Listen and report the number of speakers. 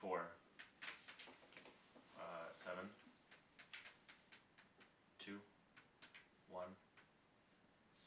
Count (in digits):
1